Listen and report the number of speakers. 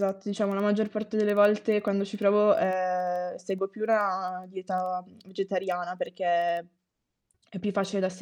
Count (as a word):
one